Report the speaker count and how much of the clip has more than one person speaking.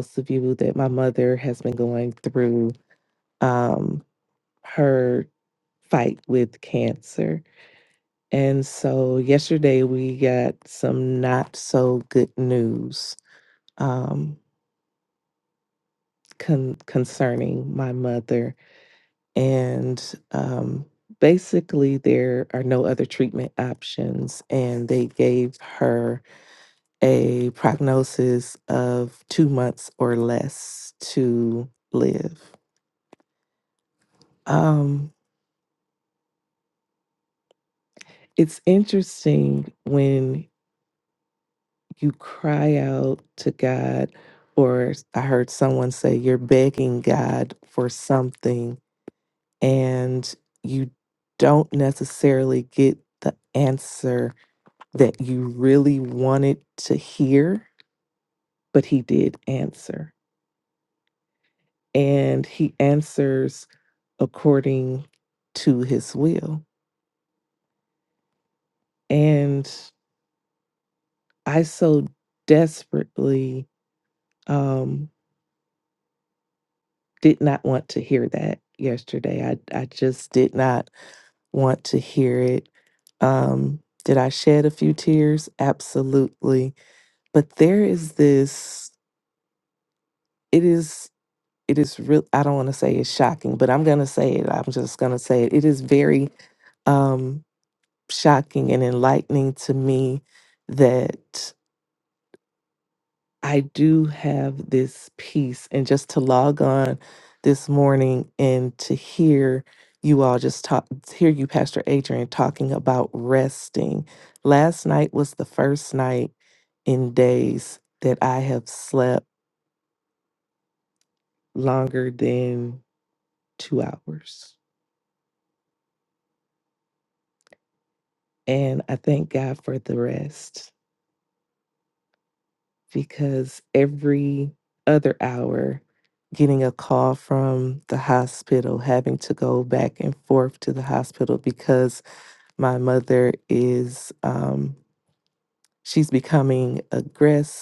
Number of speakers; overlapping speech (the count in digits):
1, no overlap